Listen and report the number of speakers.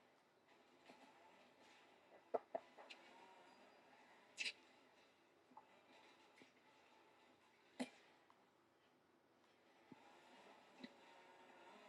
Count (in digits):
0